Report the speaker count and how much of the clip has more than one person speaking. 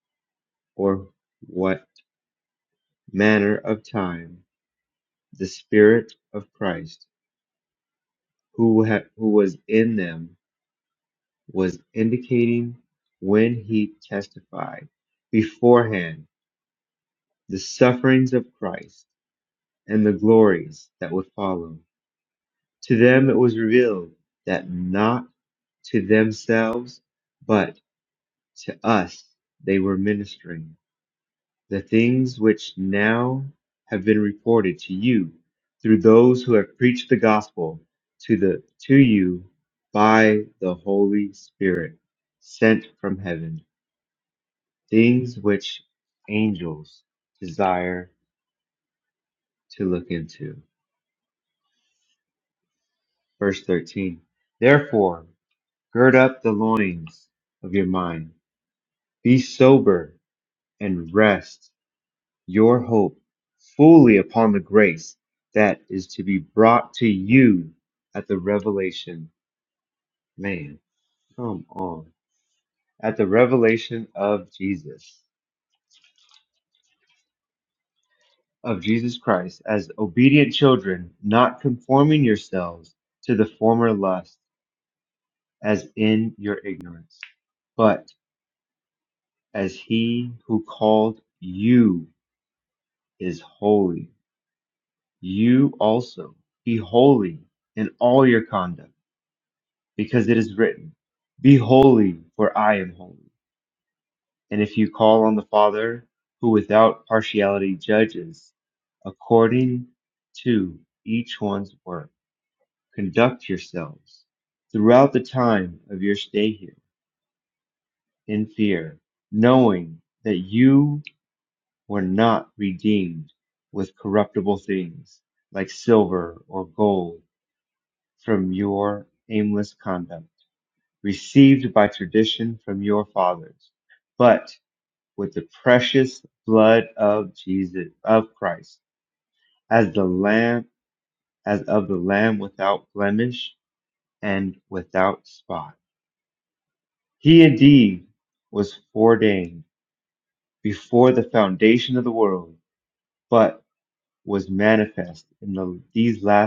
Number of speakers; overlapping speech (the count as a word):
one, no overlap